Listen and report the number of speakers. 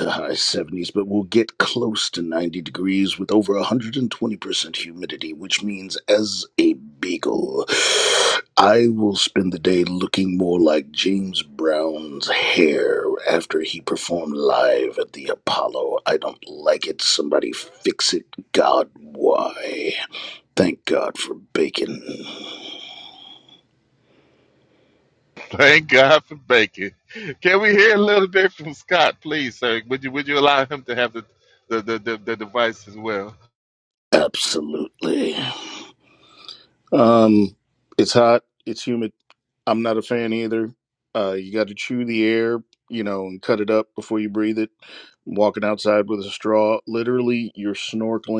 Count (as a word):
two